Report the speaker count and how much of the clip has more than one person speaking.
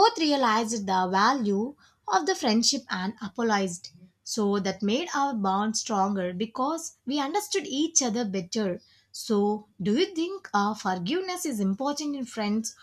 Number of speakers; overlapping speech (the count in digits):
1, no overlap